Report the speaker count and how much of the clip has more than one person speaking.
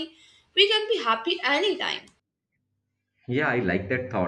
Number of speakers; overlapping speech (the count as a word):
two, no overlap